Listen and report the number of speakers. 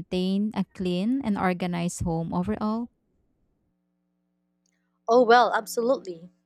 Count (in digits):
2